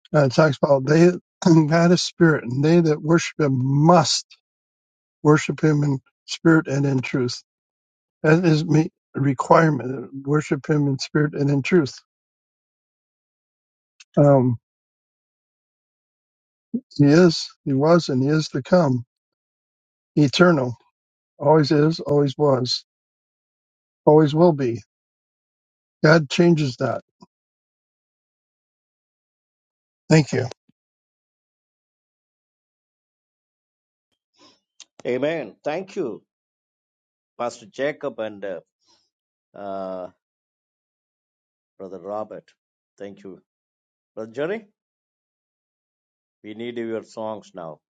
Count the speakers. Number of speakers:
two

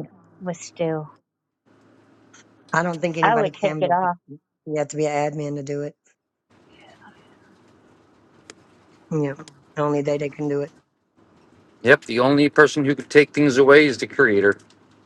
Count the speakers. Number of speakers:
three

